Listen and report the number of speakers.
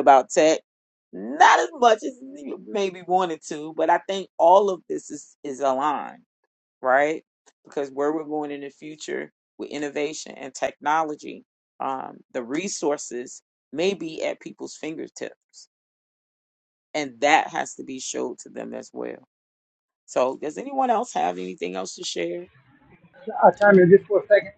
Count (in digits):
2